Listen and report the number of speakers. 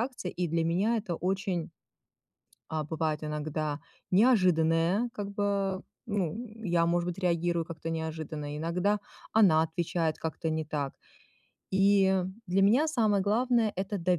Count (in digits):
1